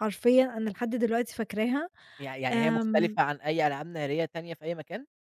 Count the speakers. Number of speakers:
2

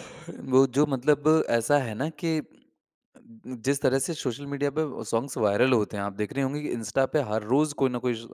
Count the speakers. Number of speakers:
1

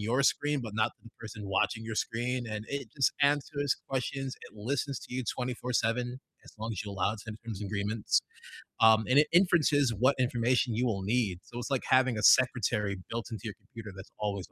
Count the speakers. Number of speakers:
1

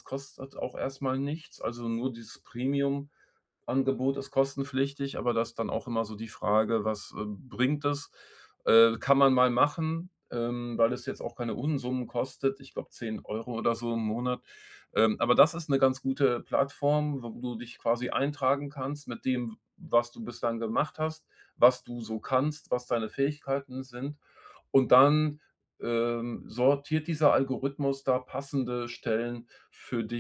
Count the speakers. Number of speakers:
1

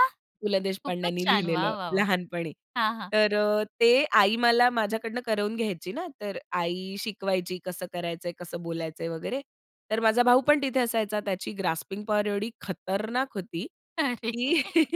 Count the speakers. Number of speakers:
2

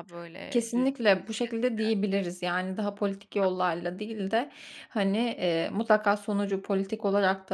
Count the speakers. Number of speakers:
2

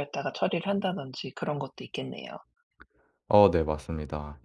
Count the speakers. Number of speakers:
2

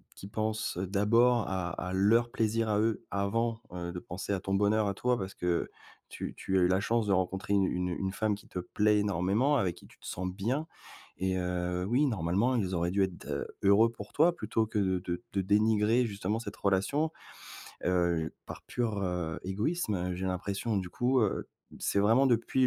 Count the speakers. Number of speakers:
1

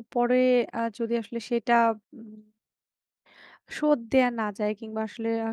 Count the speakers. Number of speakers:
1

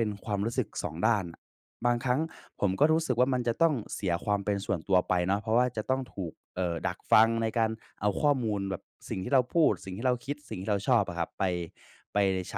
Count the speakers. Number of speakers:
1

